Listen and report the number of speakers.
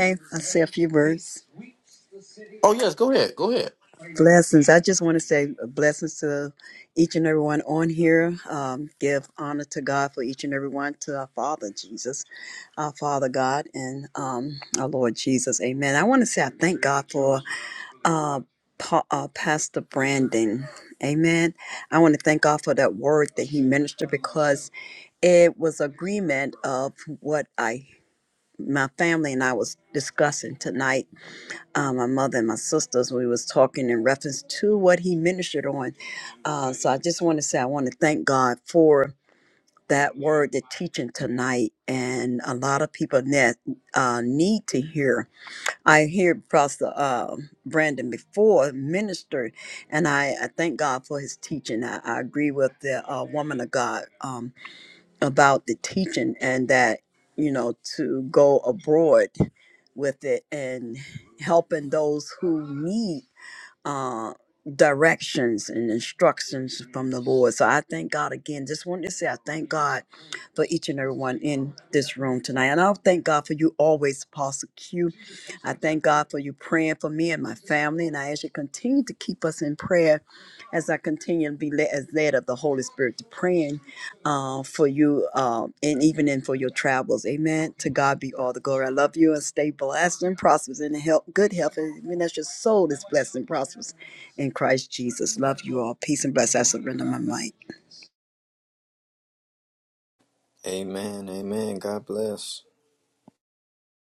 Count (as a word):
three